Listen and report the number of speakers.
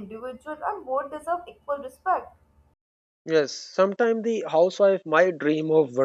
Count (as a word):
two